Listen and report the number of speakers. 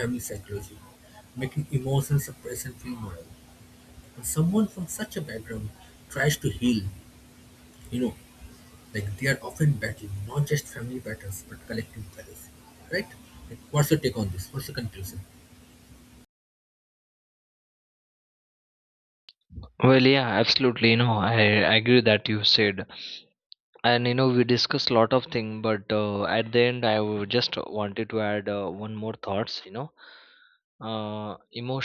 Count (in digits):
2